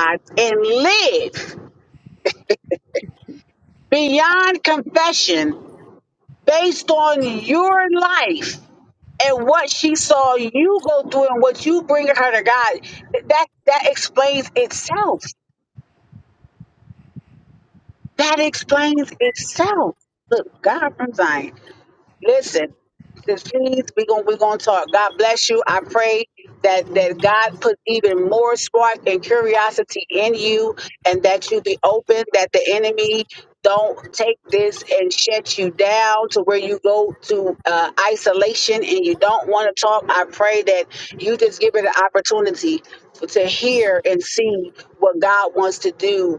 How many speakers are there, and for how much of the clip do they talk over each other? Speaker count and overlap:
1, no overlap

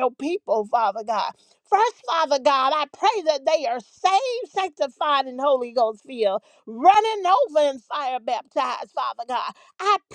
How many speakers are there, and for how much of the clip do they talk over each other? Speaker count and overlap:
1, no overlap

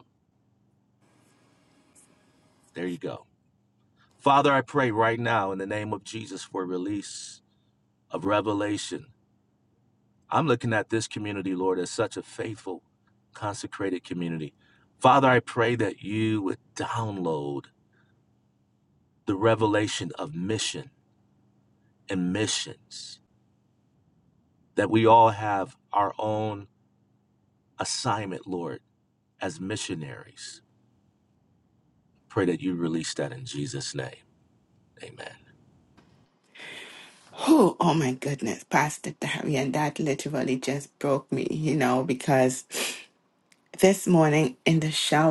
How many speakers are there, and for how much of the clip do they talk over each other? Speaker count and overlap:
2, no overlap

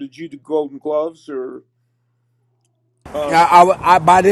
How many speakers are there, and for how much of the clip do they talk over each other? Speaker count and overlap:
2, about 3%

